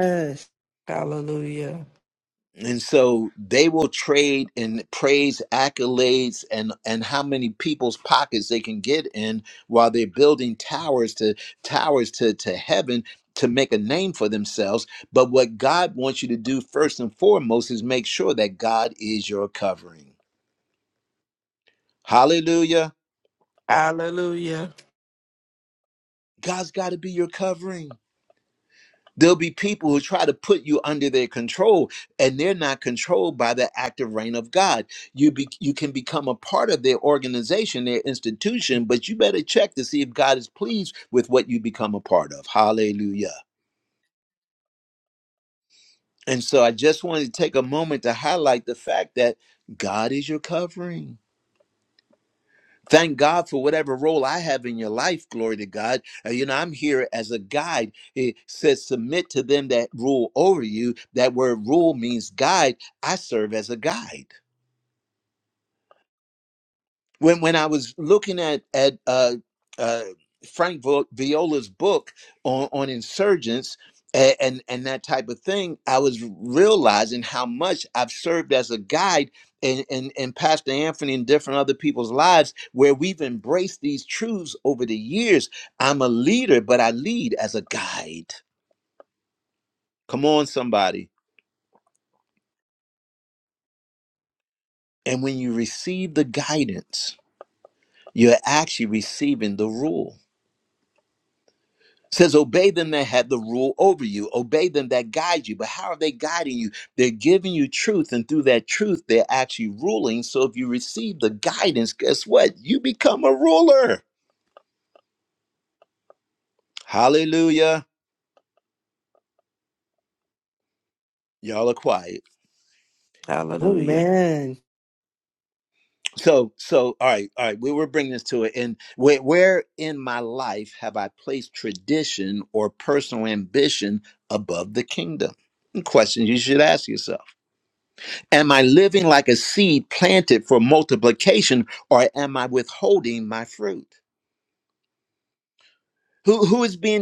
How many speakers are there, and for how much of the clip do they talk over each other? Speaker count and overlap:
3, under 1%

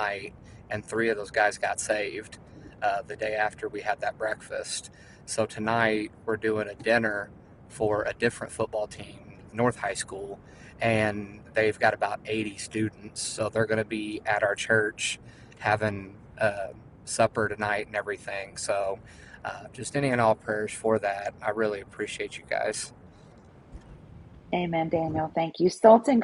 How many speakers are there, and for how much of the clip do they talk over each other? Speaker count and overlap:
2, no overlap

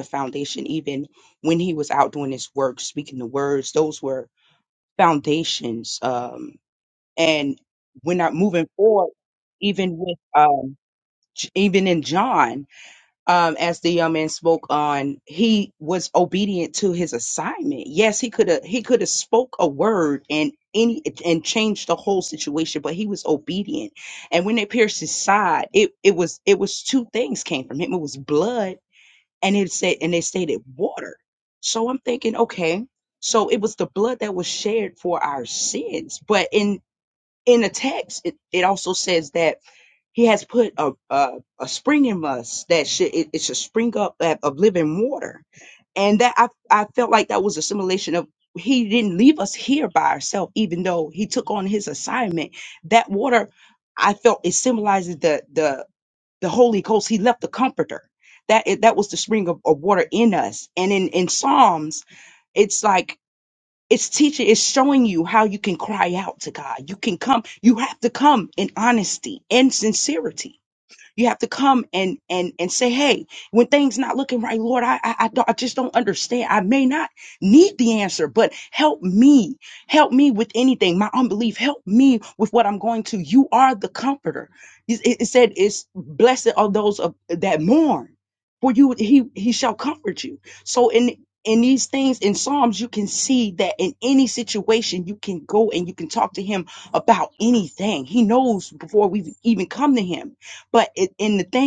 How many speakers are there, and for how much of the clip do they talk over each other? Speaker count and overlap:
1, no overlap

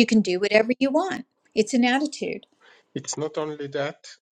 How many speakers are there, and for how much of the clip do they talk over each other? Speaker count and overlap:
2, no overlap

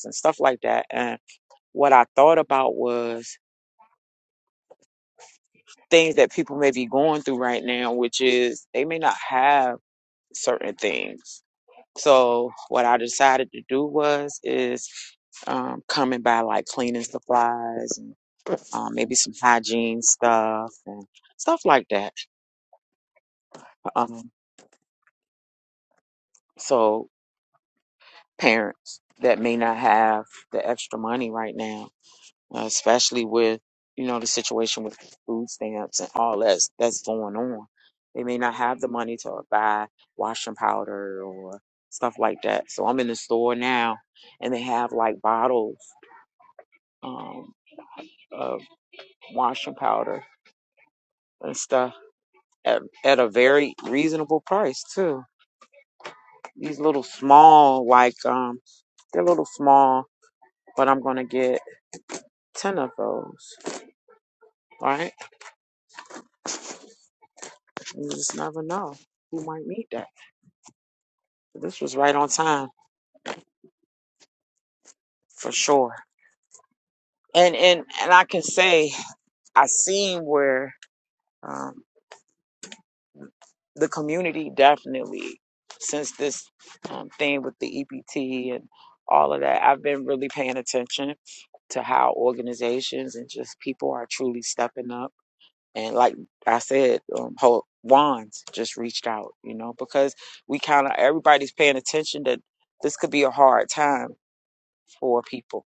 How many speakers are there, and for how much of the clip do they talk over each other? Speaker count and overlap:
1, no overlap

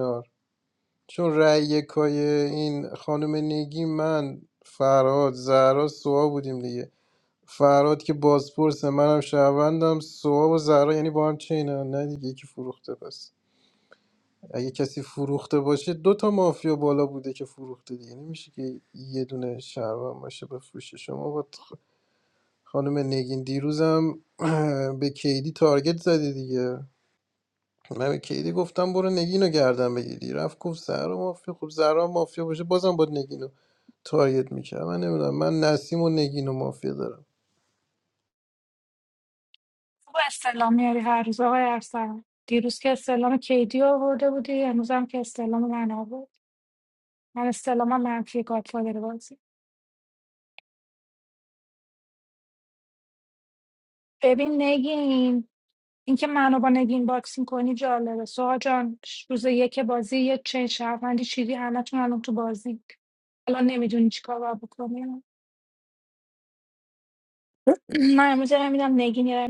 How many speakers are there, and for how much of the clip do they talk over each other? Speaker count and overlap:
2, no overlap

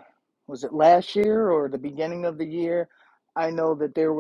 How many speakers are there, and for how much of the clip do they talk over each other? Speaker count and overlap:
1, no overlap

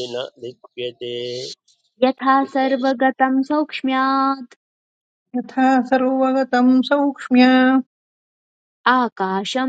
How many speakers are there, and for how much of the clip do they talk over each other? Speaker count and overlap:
3, about 3%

